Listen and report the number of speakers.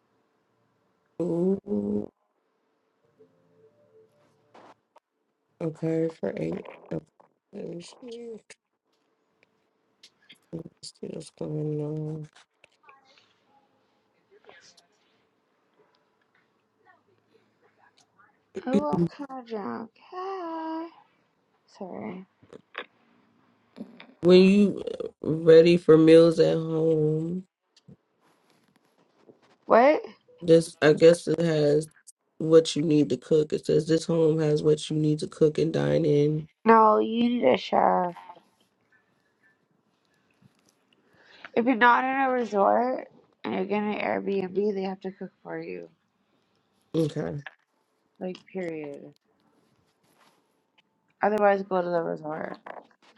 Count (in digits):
2